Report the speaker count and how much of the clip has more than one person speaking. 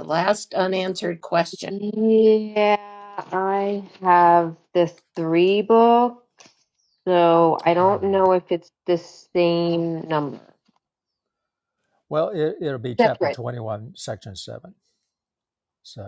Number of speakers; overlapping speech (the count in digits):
3, about 4%